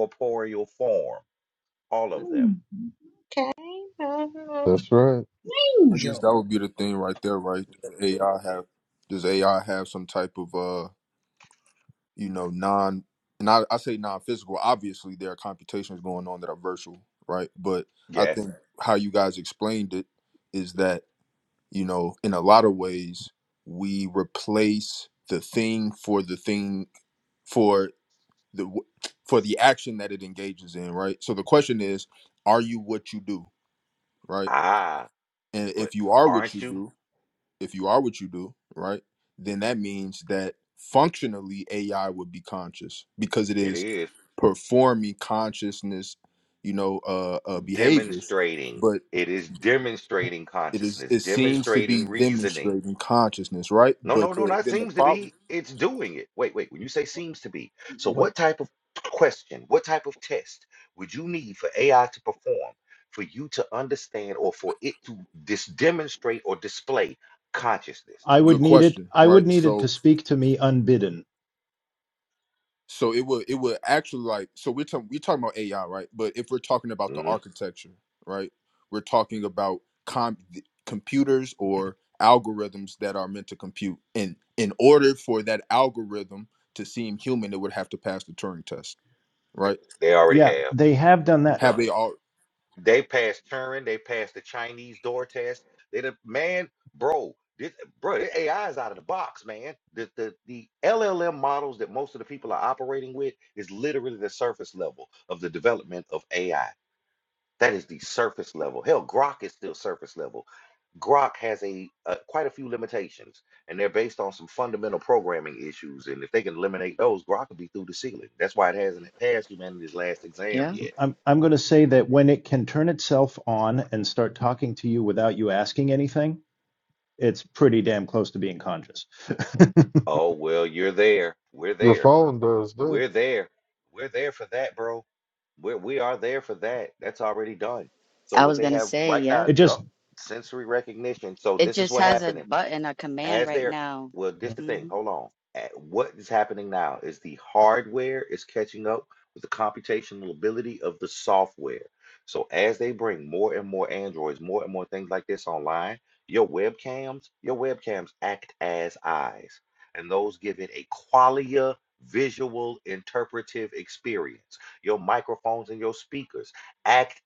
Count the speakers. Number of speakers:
six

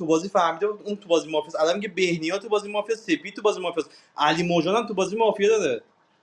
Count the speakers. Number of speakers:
one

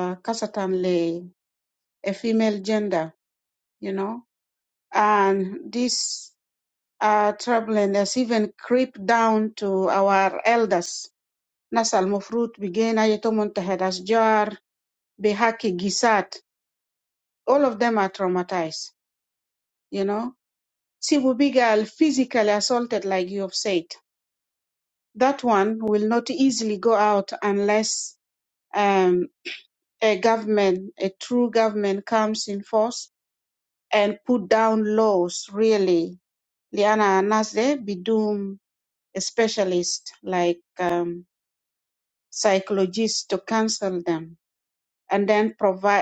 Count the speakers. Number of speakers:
one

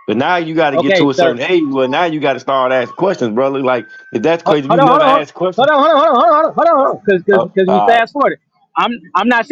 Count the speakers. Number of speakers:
two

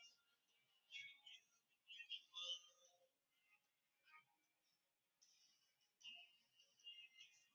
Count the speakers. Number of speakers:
zero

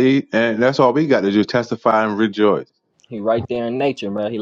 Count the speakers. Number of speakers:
two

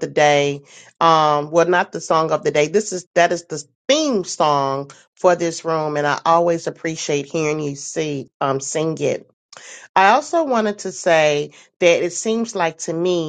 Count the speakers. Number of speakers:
one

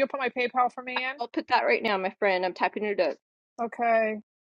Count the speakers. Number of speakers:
two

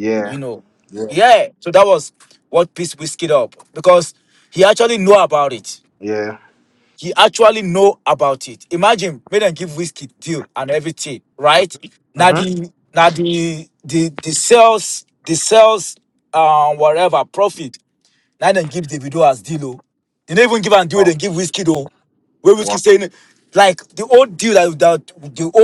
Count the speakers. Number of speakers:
two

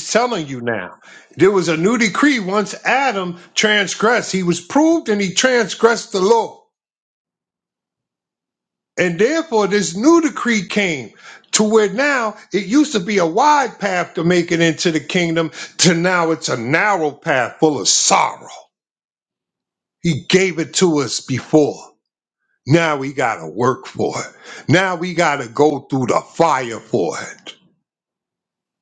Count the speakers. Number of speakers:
one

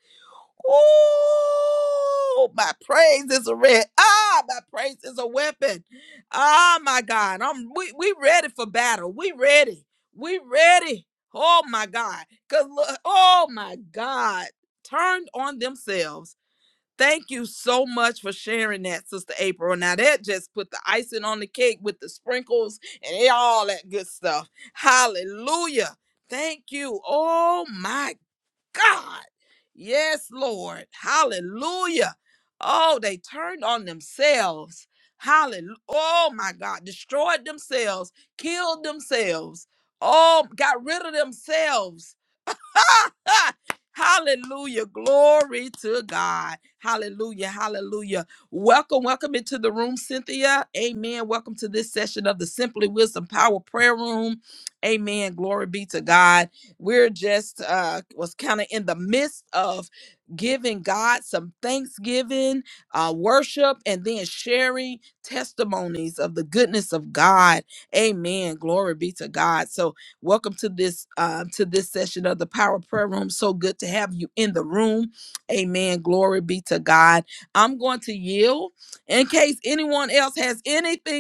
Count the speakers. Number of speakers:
one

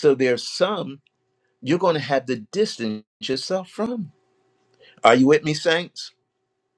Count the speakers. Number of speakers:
one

